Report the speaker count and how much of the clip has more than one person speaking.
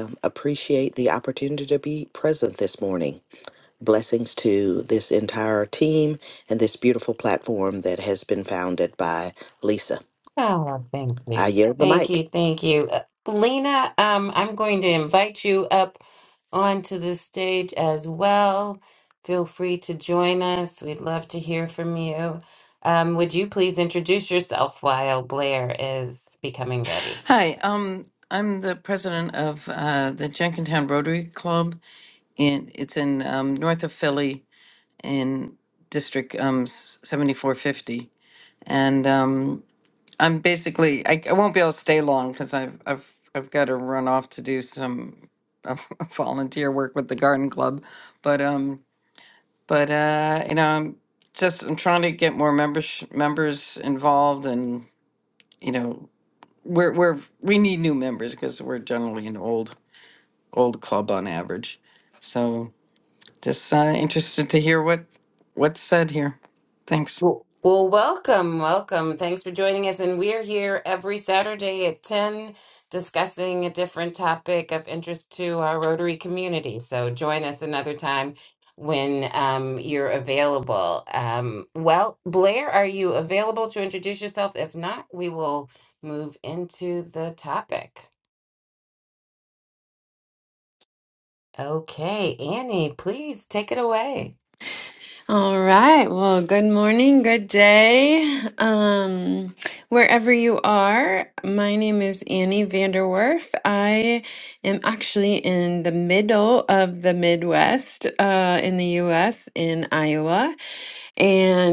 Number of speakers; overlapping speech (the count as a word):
four, under 1%